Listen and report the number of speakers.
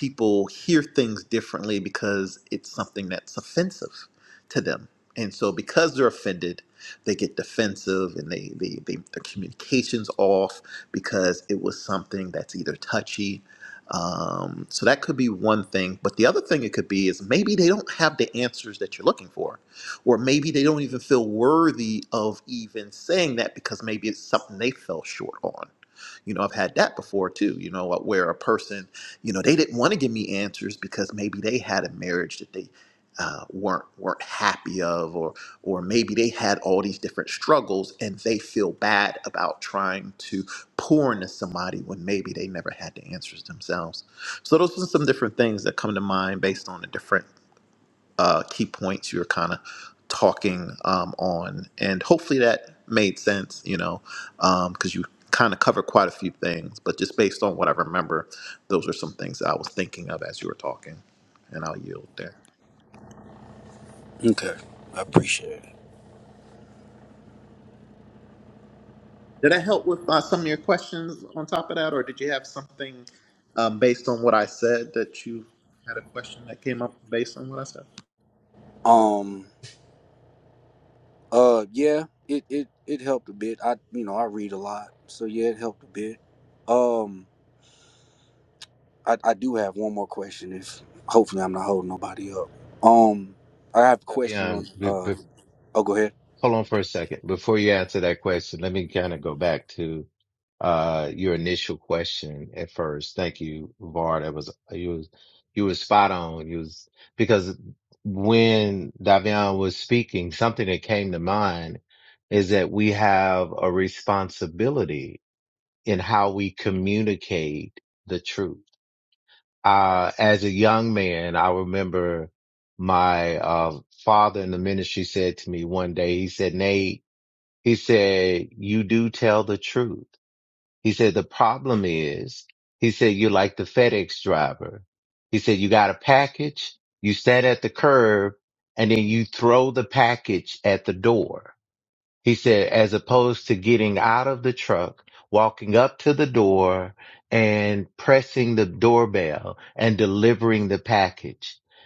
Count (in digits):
3